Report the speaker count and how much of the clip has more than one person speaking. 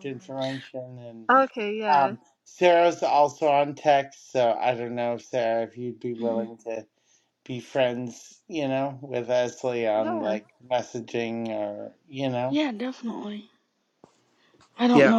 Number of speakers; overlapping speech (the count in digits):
3, about 6%